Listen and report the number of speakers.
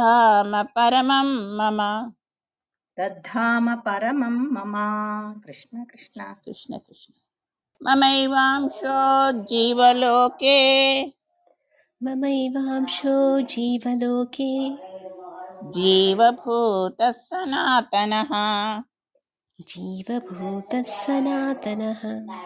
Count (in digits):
3